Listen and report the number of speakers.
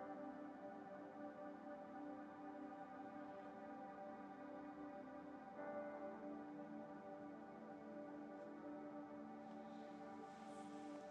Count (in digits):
0